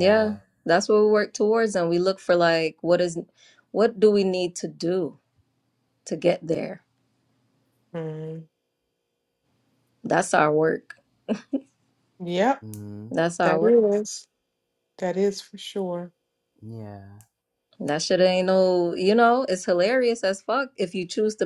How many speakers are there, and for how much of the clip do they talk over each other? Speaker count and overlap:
three, about 3%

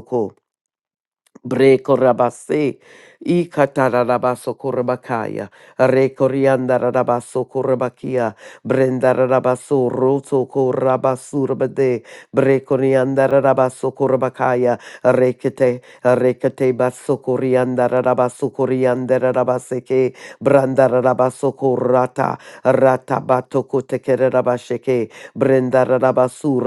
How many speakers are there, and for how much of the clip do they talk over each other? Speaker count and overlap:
one, no overlap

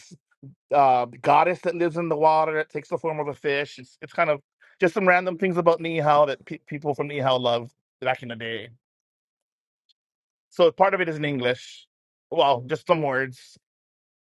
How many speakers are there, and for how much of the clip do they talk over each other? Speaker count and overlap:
one, no overlap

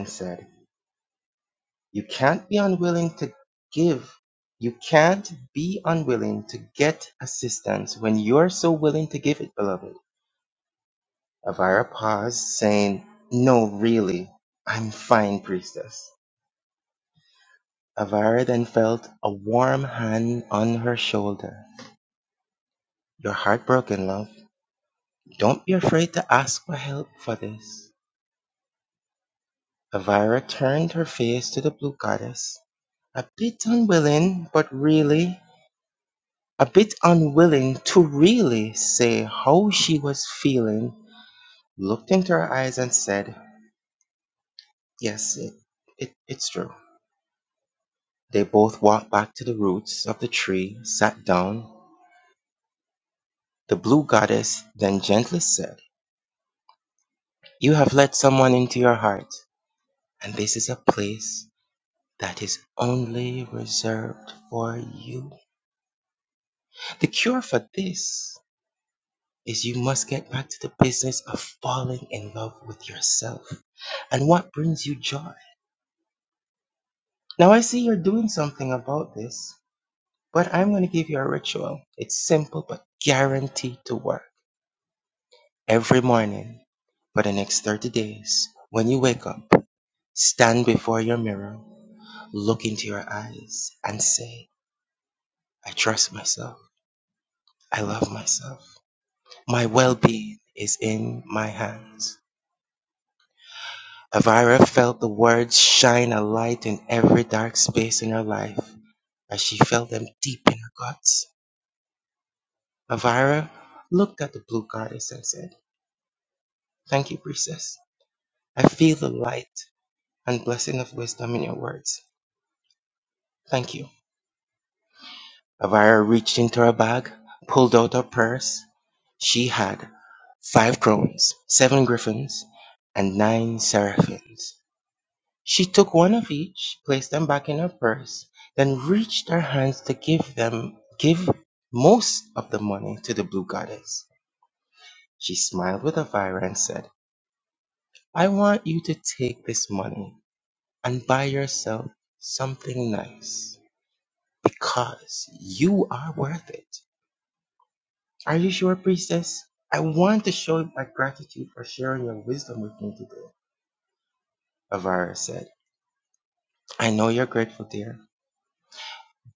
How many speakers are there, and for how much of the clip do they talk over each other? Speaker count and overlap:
one, no overlap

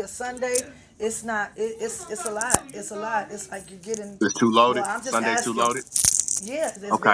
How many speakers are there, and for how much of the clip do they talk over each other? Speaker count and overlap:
two, about 18%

